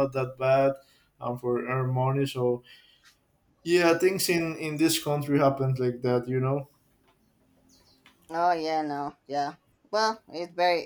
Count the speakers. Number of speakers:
2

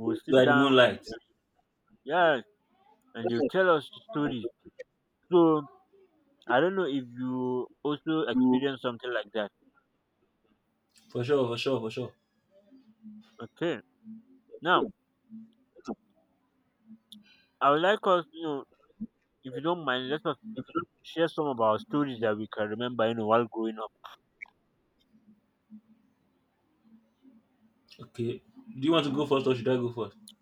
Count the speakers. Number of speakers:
2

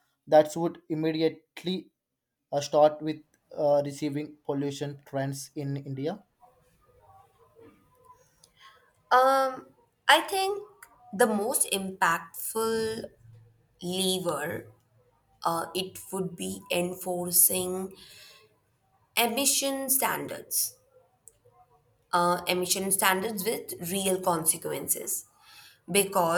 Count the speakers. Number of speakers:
2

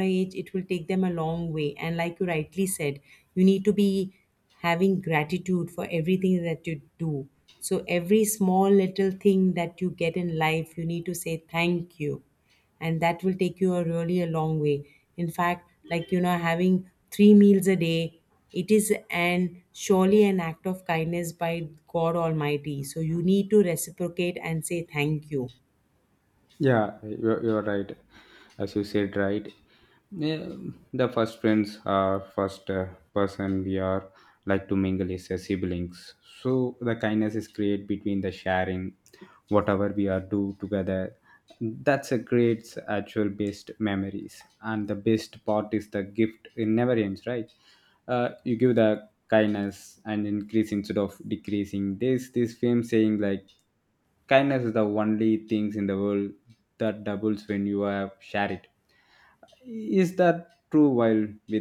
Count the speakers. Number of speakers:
2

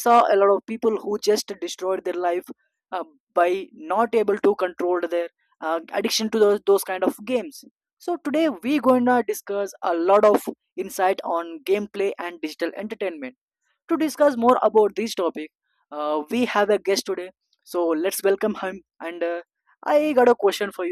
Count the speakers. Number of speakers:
1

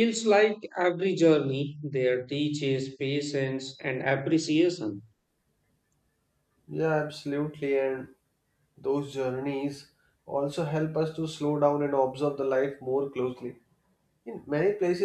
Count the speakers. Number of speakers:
2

